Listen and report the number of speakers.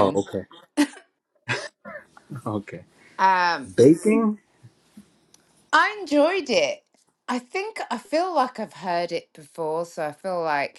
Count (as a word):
two